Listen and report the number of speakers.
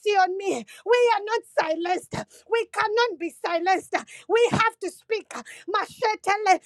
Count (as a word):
one